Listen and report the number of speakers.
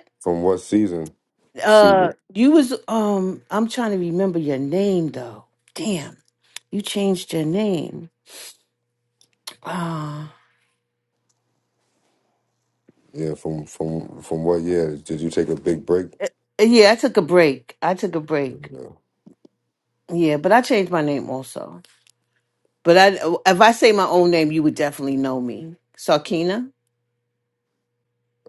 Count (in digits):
2